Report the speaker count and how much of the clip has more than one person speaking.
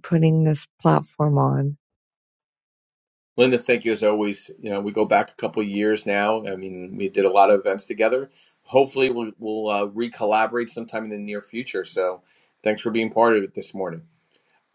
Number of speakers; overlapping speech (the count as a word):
two, no overlap